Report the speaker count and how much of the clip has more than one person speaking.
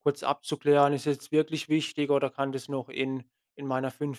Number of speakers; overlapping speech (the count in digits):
1, no overlap